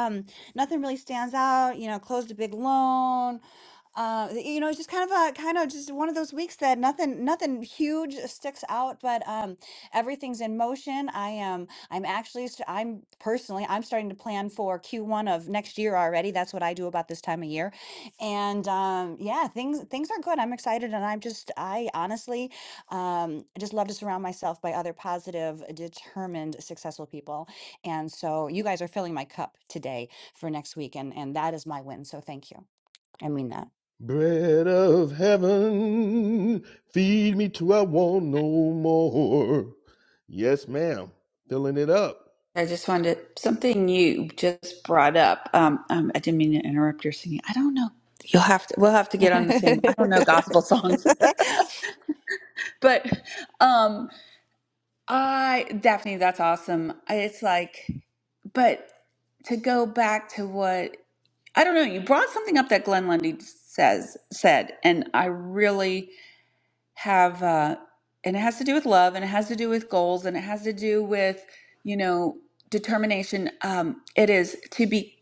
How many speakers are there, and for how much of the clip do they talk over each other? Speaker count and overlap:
three, no overlap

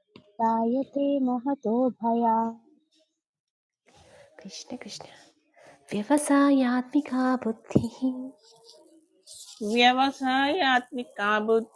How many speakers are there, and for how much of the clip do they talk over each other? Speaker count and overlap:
three, no overlap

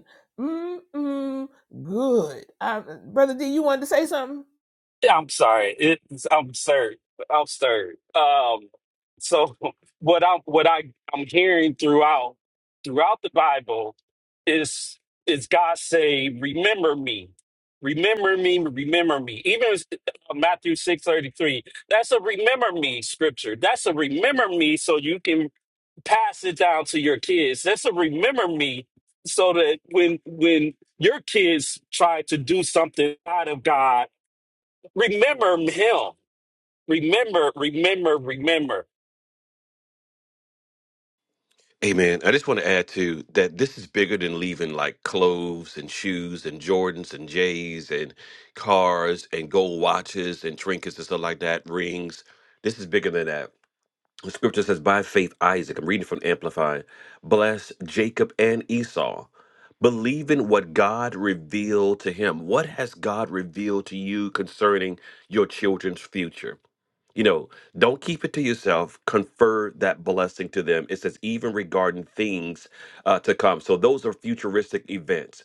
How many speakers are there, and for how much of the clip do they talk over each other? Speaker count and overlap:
three, no overlap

